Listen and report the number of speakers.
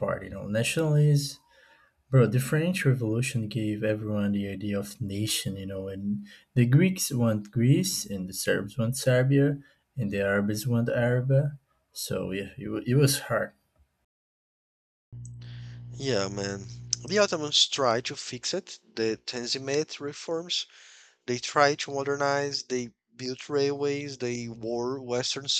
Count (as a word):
two